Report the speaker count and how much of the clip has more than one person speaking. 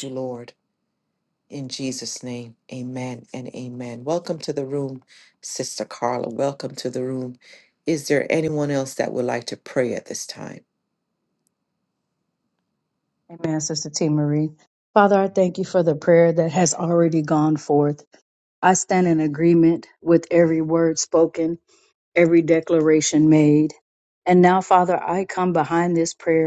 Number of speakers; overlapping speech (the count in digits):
2, no overlap